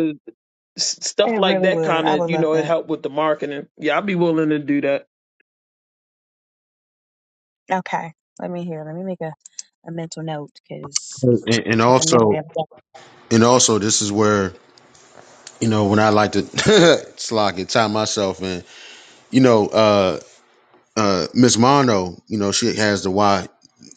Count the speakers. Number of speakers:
three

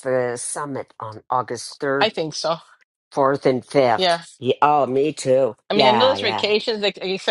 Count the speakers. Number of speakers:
two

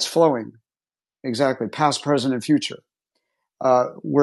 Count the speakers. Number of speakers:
one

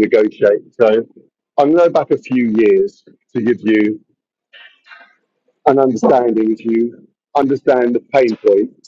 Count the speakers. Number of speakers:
one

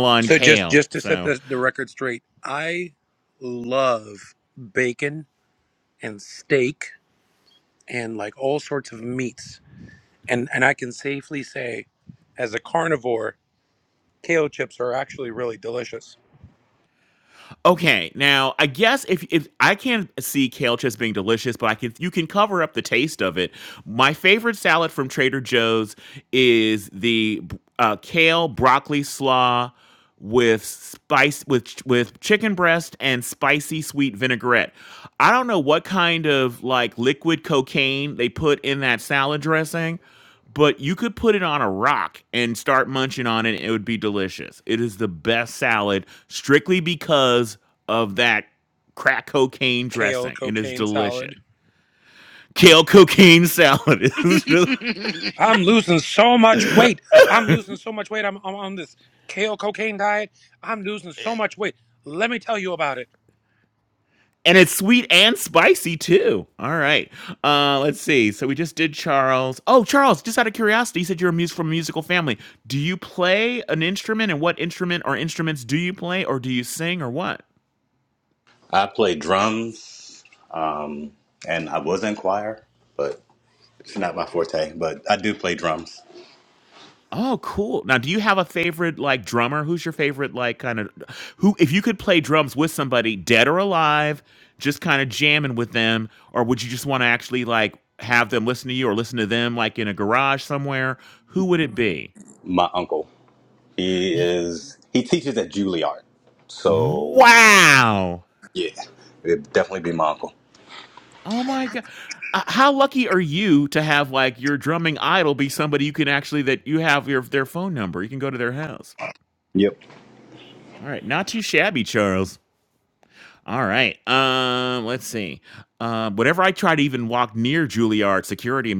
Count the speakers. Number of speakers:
three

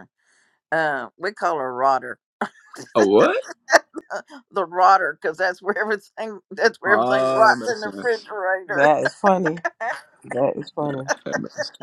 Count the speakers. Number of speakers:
three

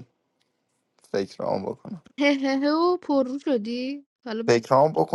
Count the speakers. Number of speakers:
two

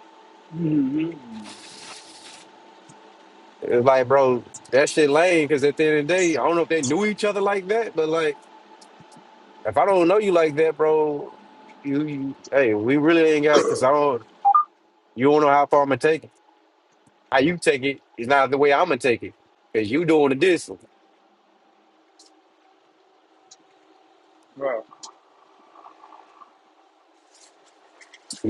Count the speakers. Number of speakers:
two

